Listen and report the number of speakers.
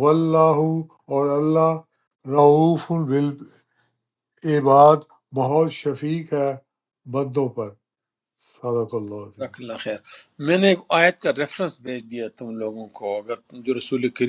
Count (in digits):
2